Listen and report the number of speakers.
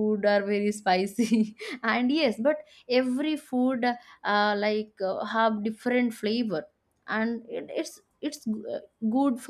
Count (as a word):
one